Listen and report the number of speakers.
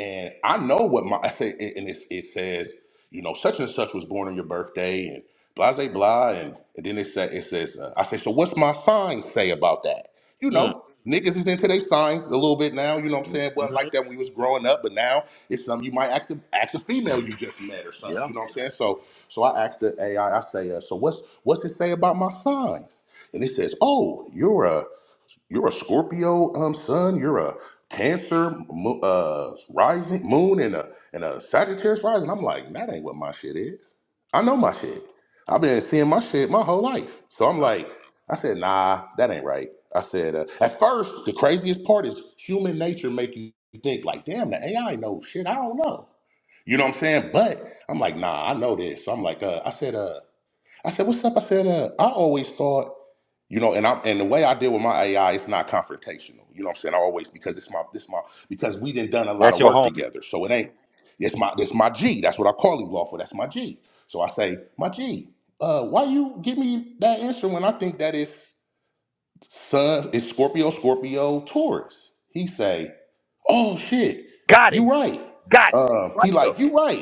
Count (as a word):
two